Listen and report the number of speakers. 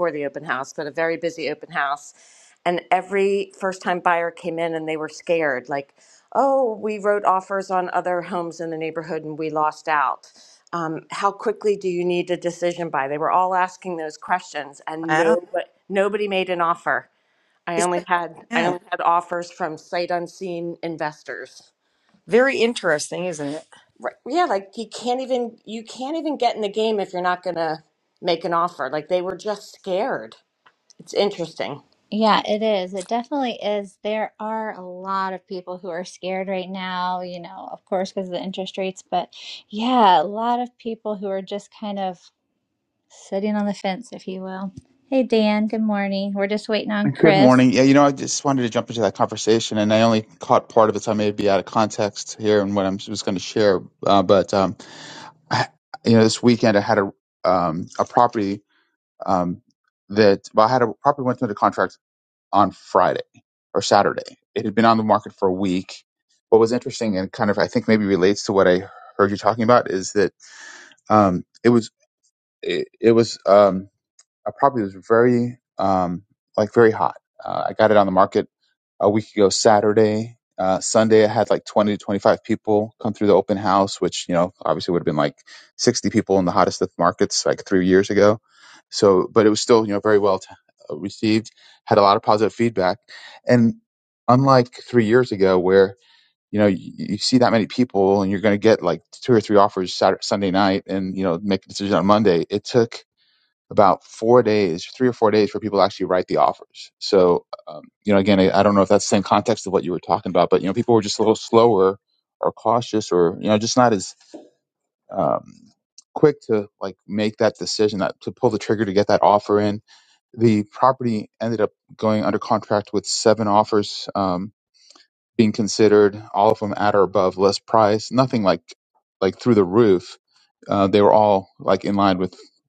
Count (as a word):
four